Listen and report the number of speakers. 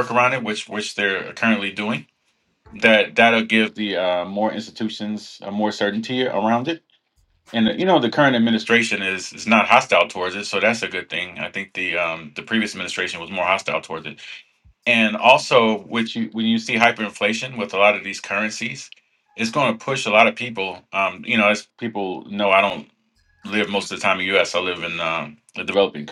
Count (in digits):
1